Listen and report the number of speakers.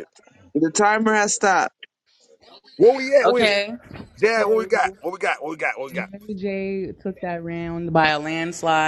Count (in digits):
3